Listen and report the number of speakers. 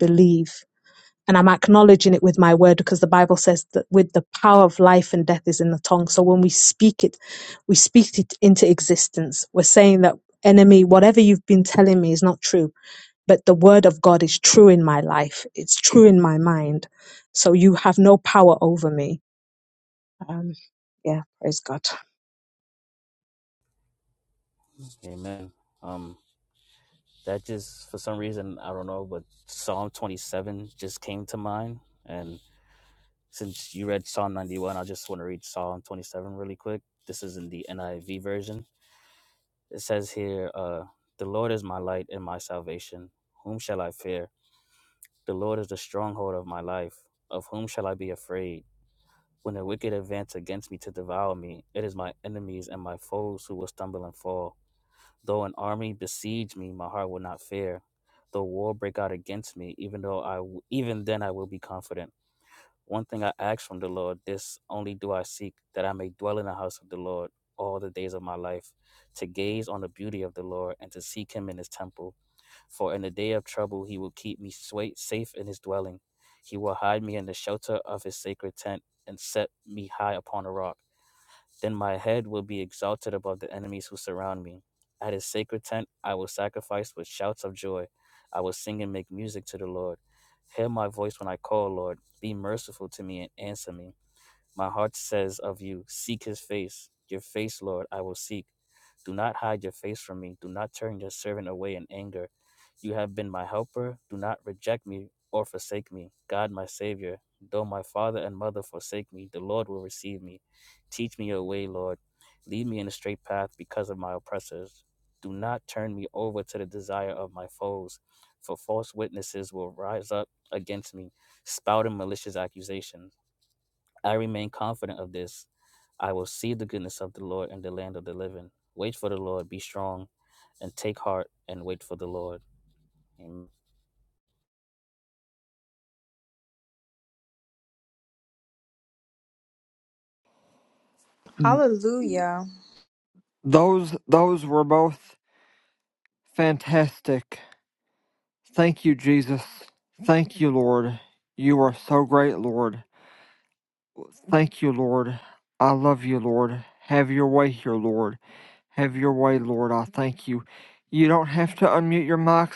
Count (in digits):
4